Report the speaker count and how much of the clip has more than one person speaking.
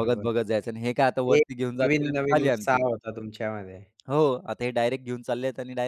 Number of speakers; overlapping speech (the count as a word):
two, about 25%